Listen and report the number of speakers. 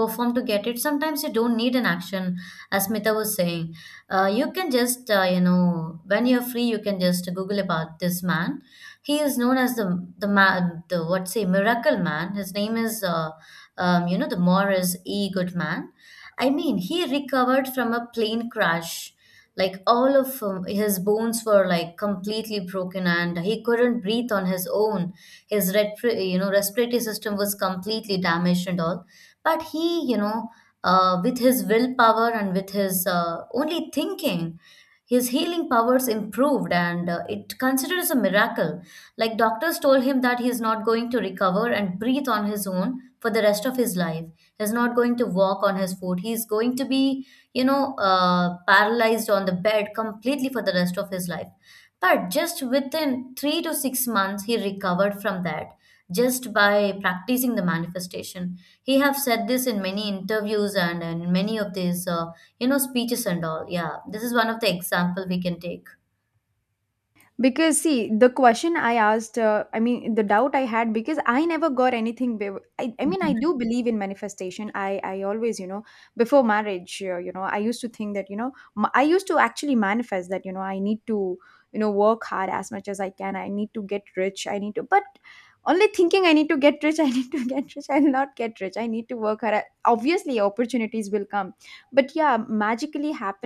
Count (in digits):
2